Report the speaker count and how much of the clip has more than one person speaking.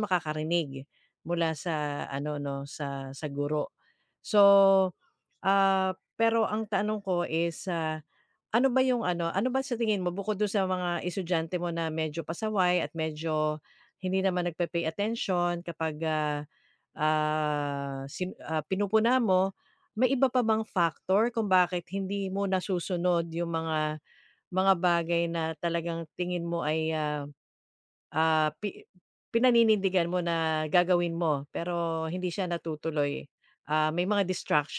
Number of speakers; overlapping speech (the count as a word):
one, no overlap